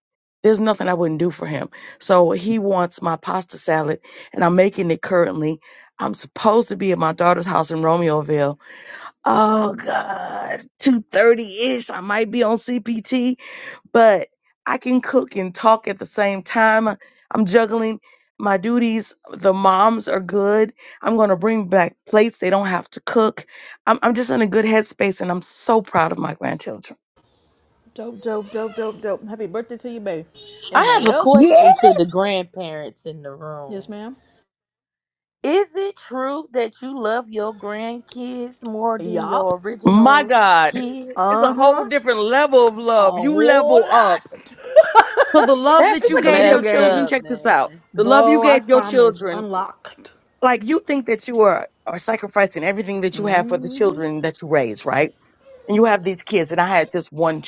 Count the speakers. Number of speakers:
3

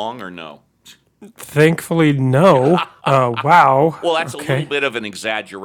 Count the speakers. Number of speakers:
2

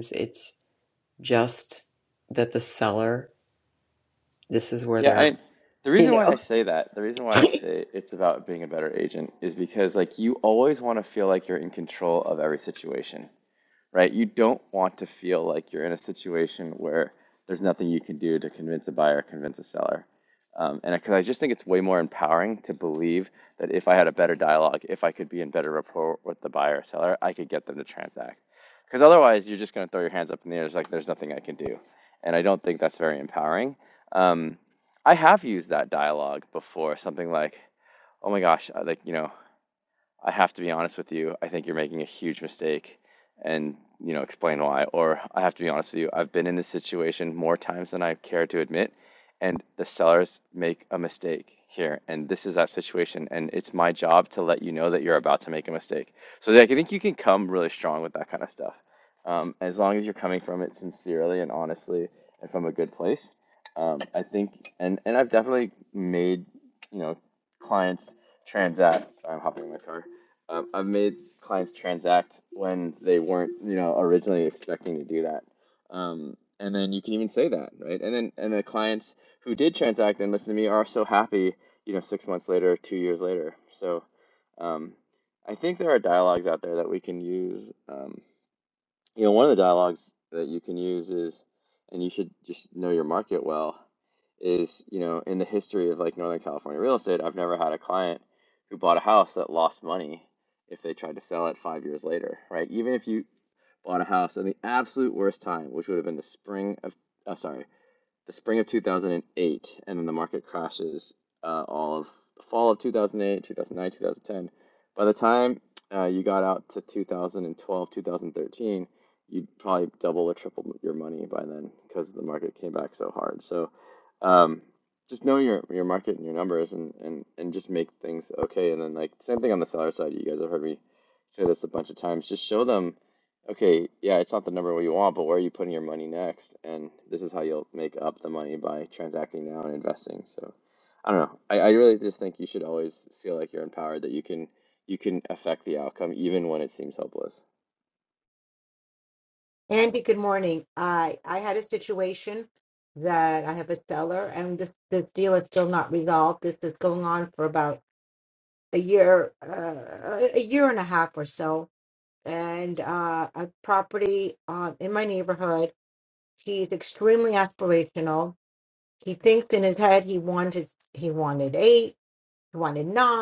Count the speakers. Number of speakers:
3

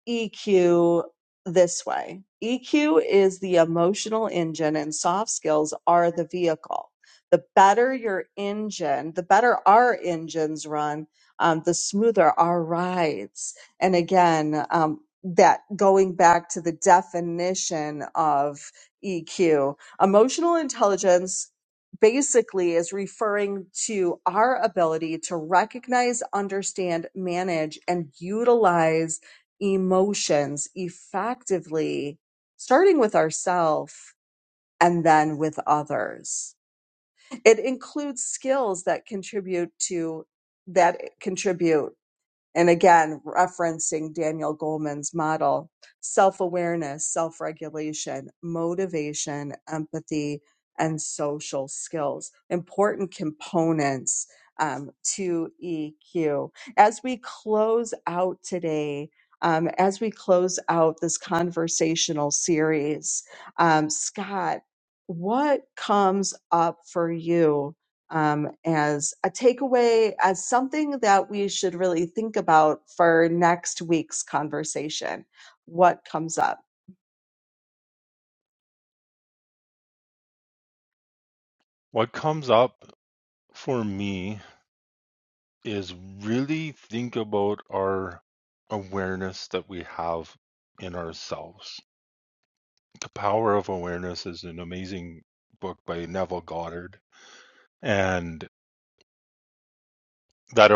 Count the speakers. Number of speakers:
2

